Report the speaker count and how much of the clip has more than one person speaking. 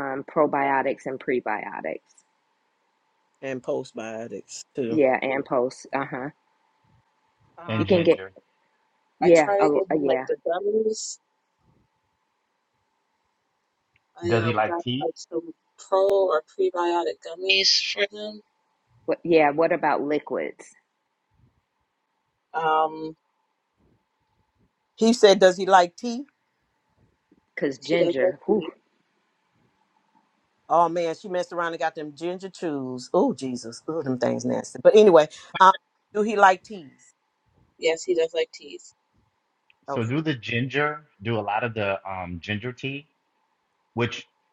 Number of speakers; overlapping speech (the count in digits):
4, about 8%